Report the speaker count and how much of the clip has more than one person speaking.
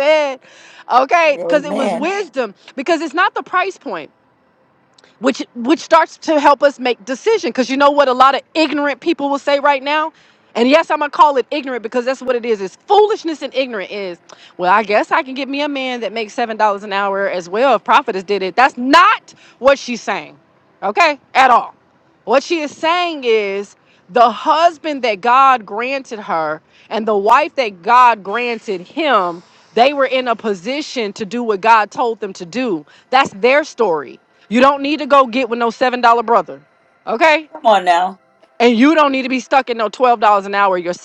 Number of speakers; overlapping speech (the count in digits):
2, about 2%